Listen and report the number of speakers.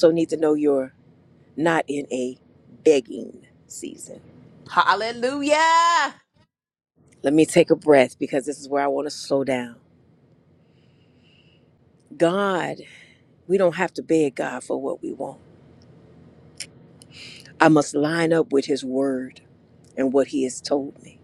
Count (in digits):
2